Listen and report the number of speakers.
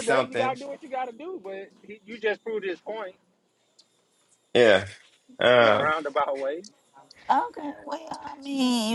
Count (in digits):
3